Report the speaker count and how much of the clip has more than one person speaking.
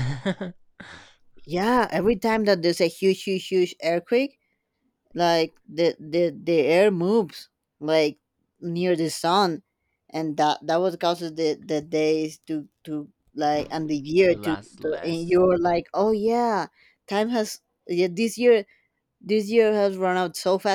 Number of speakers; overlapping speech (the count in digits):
2, about 5%